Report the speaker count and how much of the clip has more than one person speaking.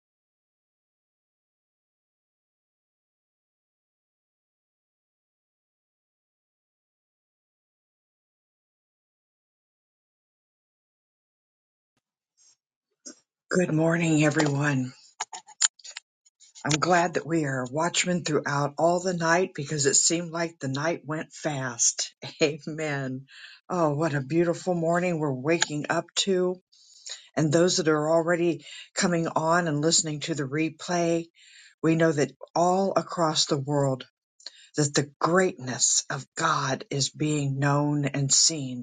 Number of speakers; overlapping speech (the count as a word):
one, no overlap